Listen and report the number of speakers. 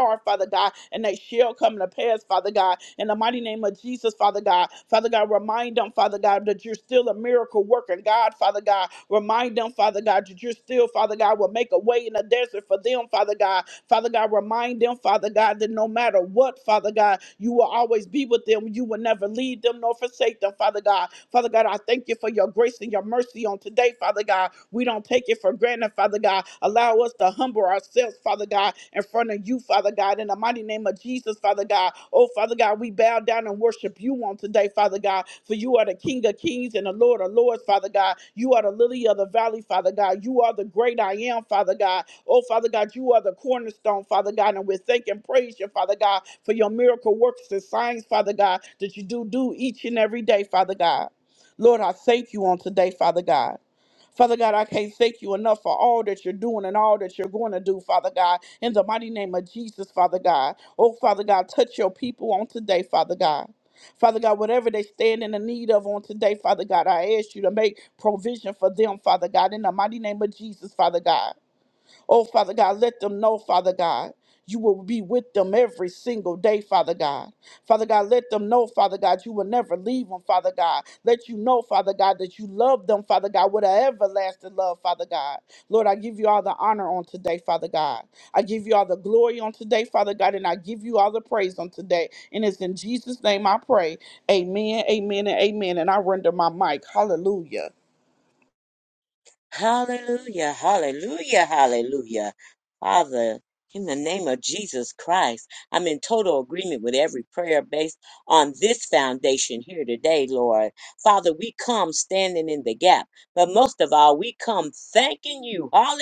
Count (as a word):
two